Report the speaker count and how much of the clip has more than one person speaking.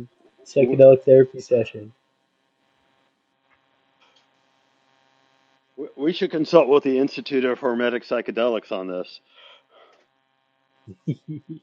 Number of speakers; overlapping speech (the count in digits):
2, no overlap